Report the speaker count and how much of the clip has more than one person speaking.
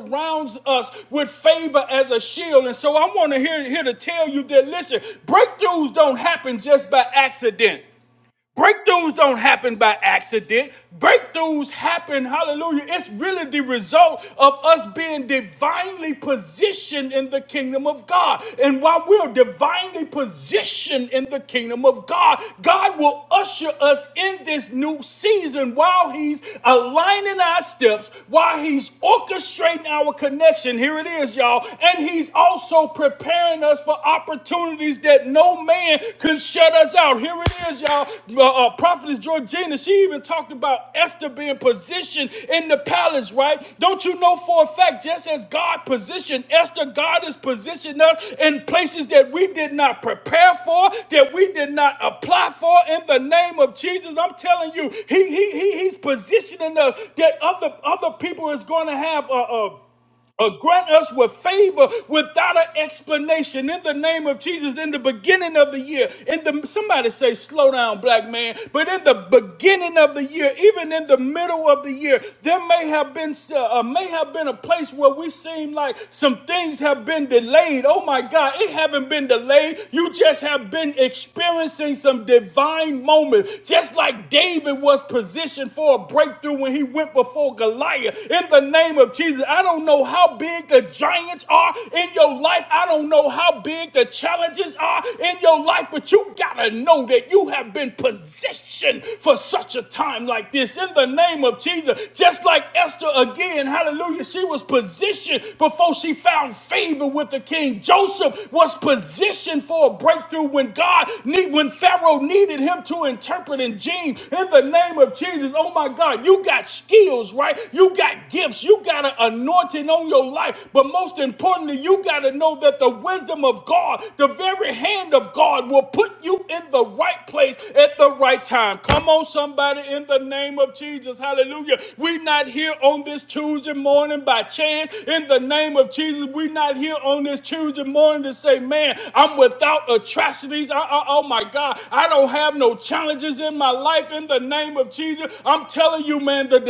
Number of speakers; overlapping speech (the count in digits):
1, no overlap